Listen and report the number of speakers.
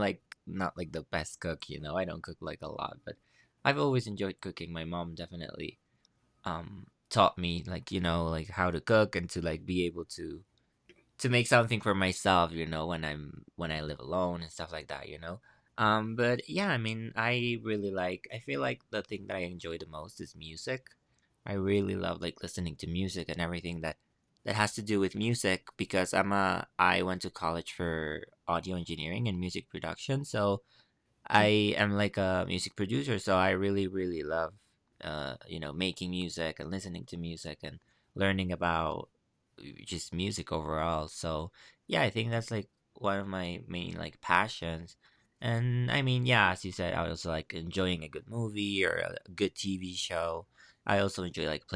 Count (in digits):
1